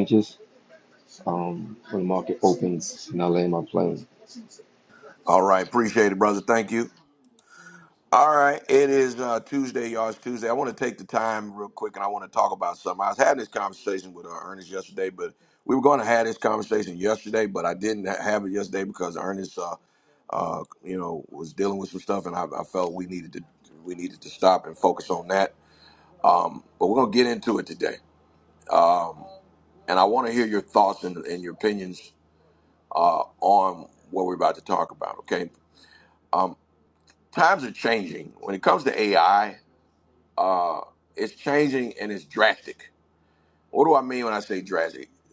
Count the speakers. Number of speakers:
2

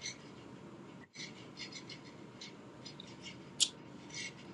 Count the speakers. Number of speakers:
0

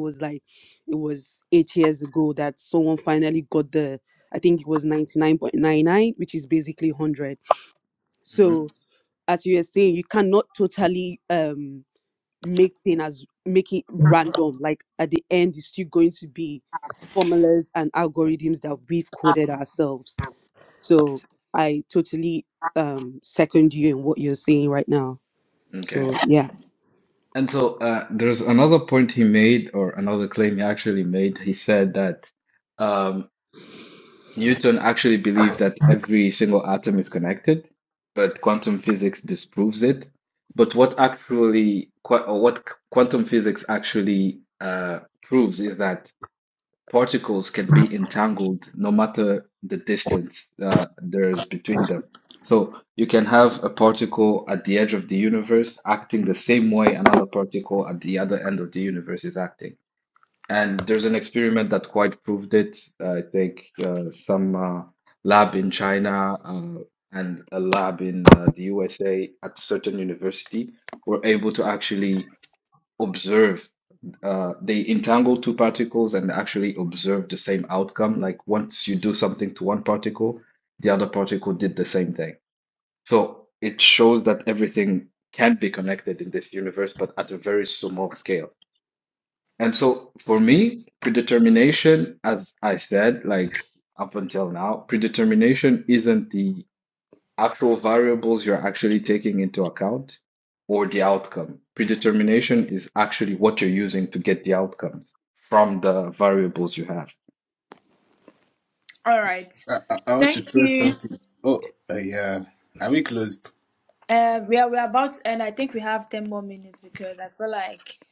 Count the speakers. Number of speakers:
4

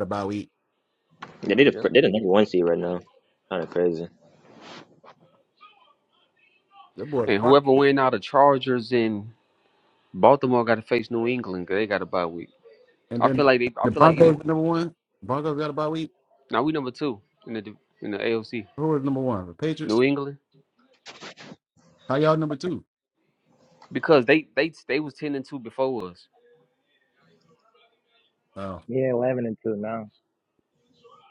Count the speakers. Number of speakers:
4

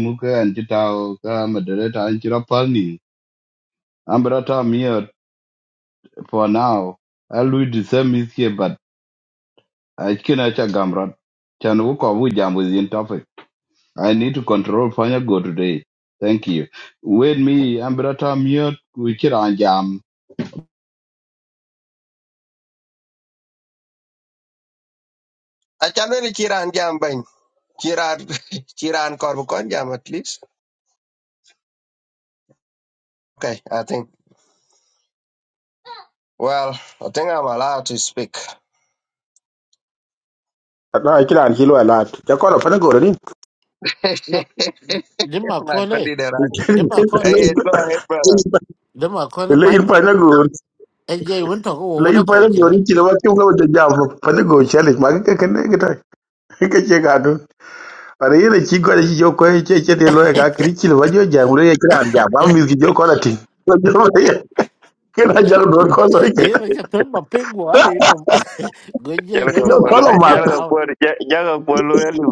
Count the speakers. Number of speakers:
5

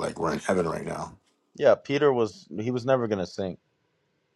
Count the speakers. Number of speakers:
2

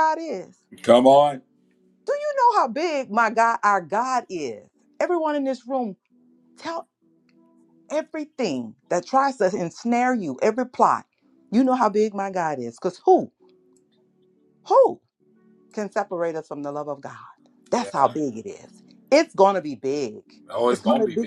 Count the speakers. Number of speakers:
2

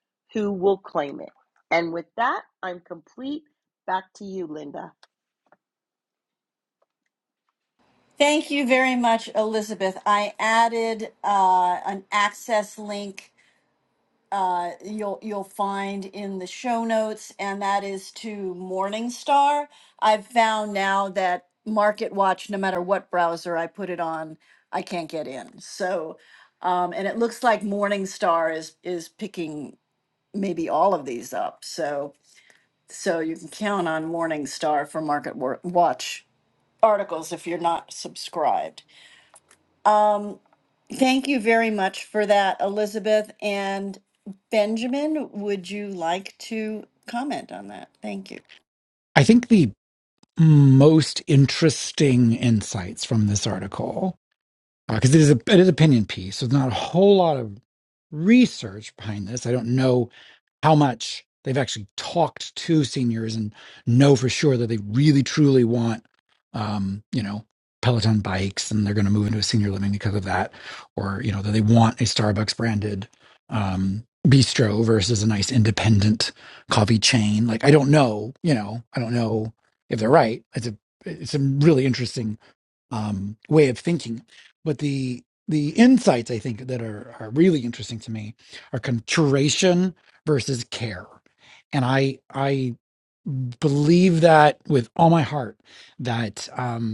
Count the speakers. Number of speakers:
3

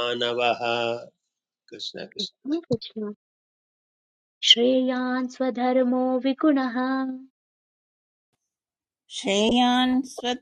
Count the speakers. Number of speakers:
3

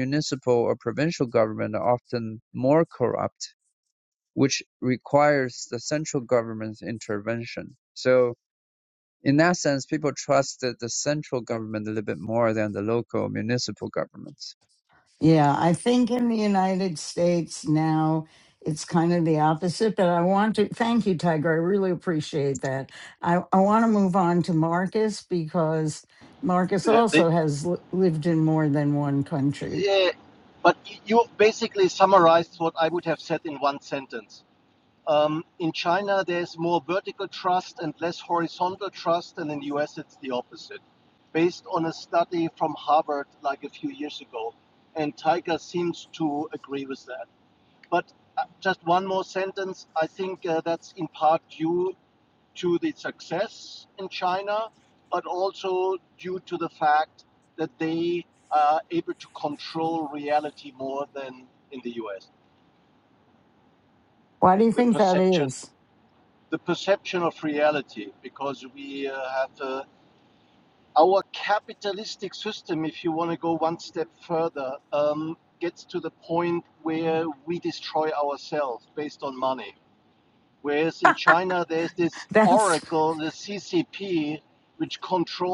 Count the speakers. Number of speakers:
3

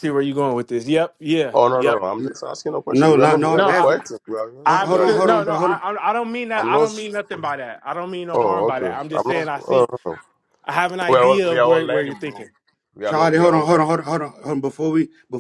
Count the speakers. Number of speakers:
3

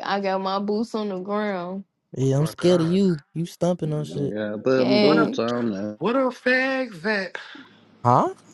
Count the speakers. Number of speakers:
4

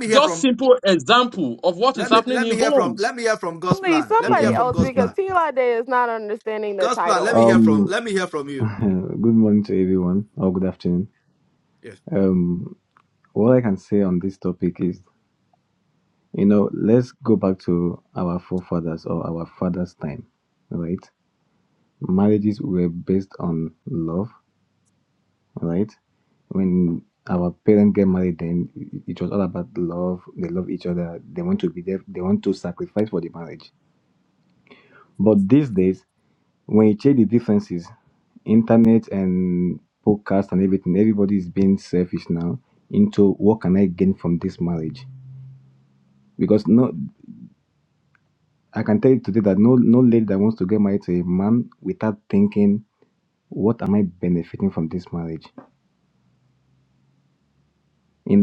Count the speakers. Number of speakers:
4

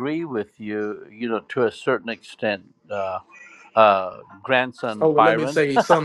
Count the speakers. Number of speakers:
2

